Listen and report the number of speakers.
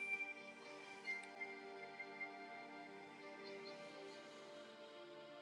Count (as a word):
zero